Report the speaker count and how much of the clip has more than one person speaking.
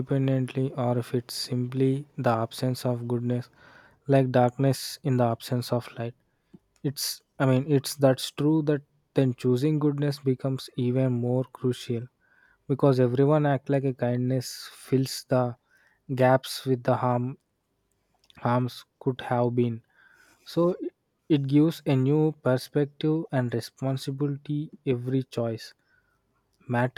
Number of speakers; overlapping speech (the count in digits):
1, no overlap